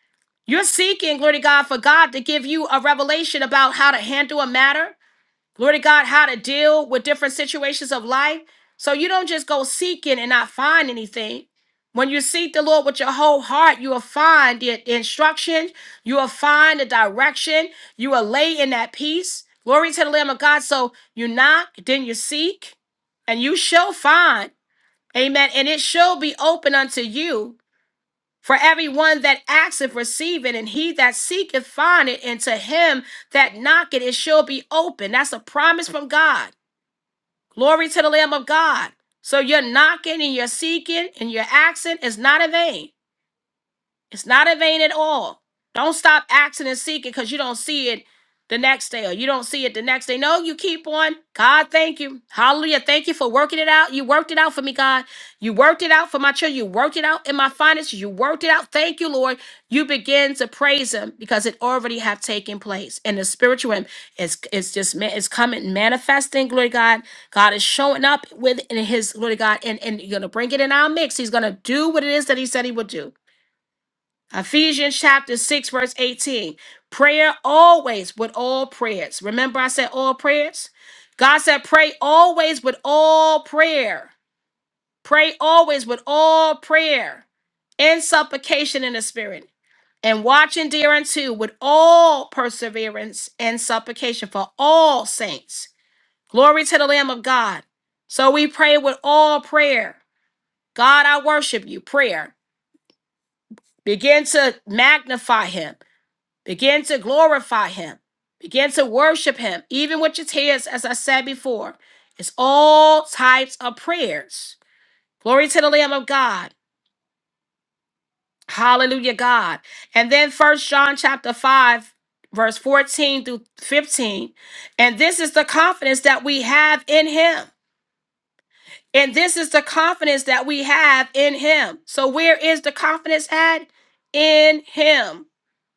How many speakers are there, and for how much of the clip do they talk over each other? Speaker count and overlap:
one, no overlap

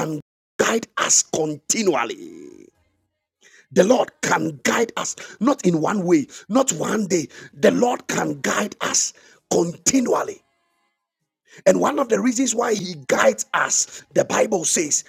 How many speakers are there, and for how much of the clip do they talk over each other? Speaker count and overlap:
one, no overlap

